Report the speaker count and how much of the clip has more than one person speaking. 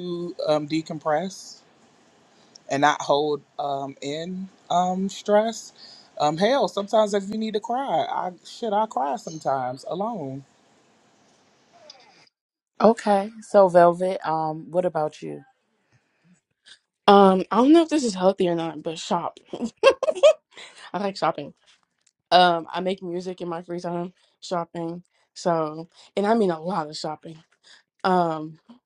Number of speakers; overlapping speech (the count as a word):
three, no overlap